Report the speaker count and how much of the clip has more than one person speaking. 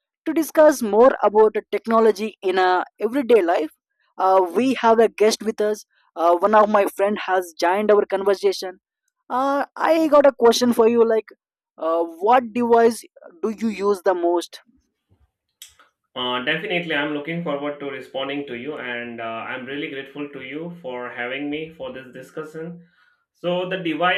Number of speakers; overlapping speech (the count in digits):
2, no overlap